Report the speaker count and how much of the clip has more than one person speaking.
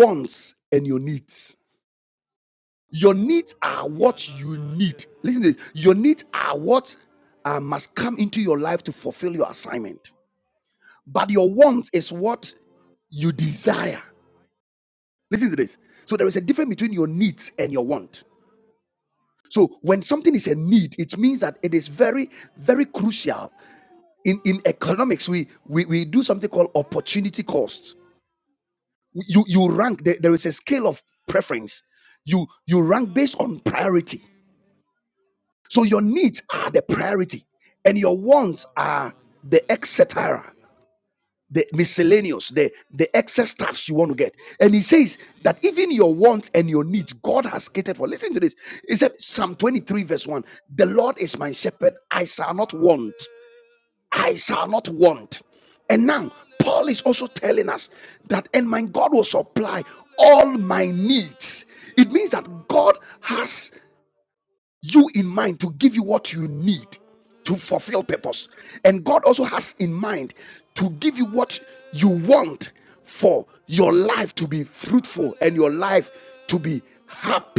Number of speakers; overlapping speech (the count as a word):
one, no overlap